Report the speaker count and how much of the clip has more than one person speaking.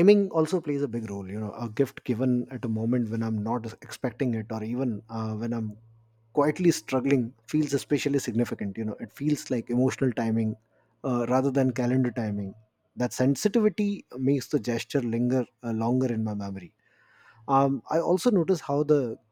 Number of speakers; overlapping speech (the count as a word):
one, no overlap